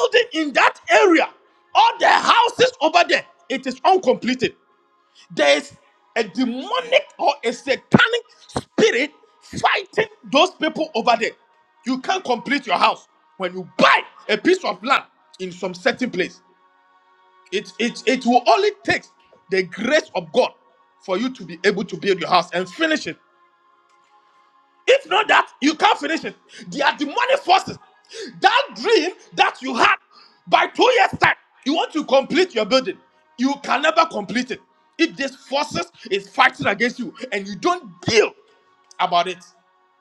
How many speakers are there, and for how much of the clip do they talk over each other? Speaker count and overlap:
one, no overlap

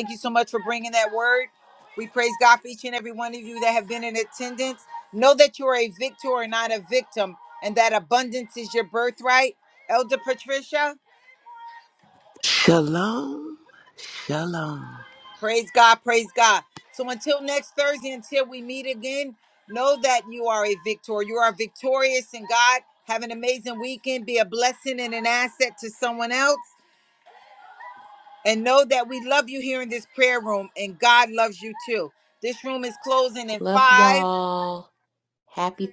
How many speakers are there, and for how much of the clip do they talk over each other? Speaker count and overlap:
three, about 2%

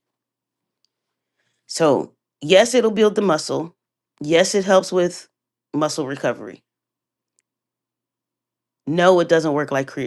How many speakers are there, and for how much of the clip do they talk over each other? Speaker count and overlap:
one, no overlap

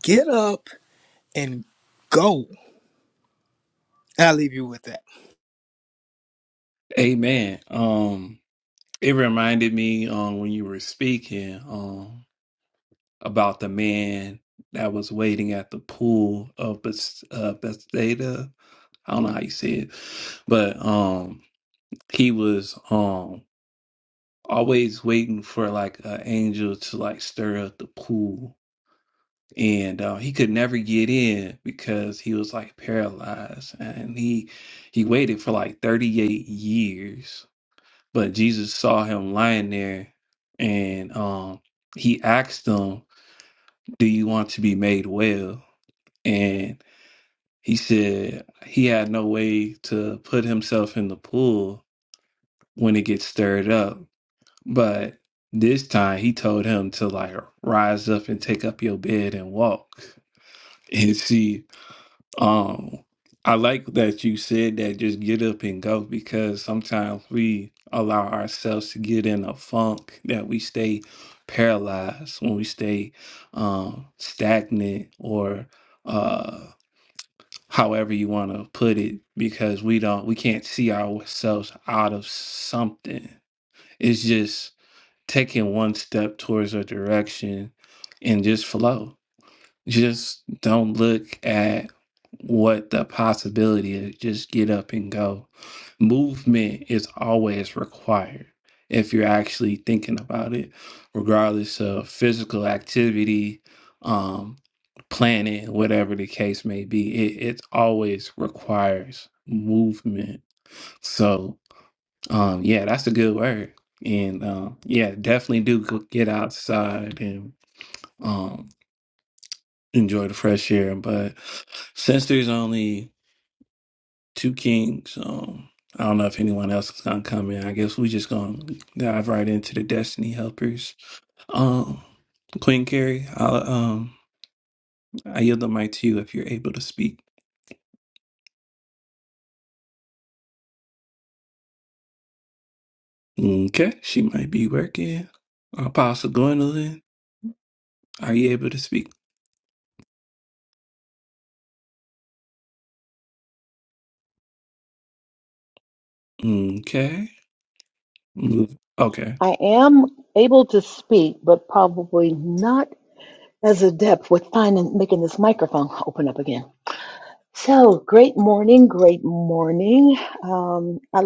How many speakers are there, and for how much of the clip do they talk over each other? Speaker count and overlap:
three, no overlap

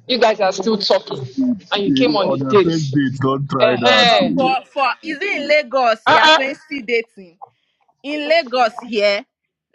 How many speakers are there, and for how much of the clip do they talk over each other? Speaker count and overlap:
three, about 29%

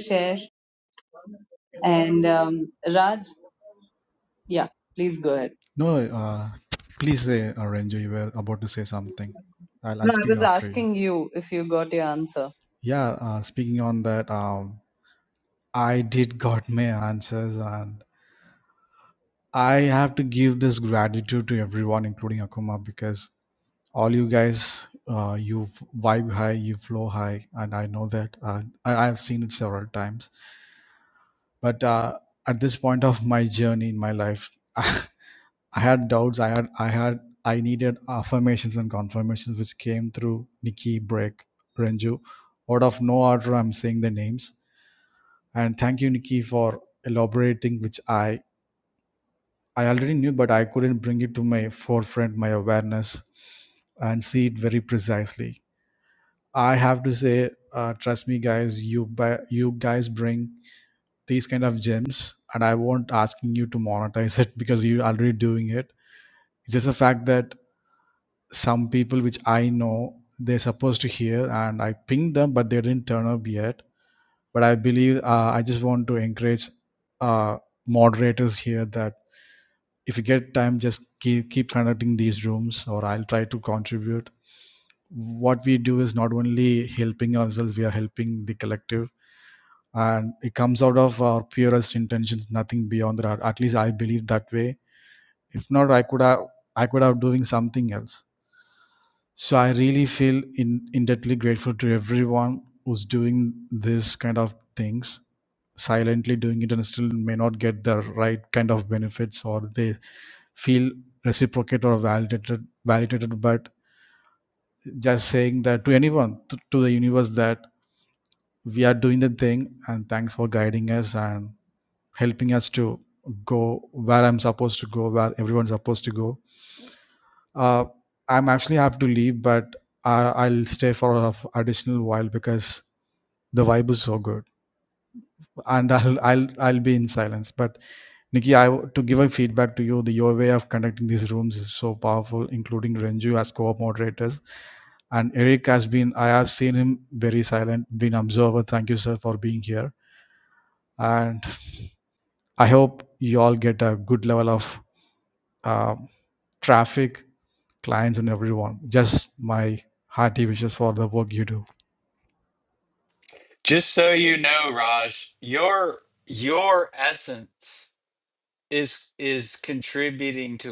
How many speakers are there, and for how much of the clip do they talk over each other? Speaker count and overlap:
three, under 1%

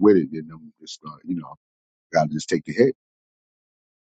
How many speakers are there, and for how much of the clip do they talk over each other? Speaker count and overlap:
one, no overlap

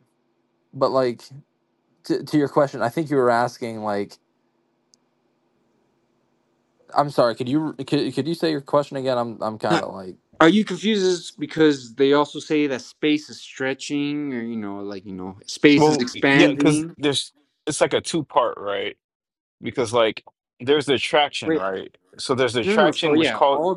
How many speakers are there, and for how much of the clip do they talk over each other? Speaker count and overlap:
three, about 10%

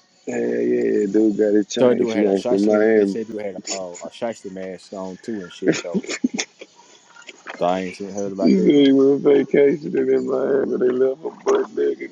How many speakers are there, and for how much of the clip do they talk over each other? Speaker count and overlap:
two, about 16%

